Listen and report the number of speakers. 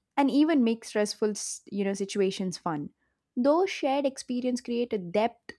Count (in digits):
1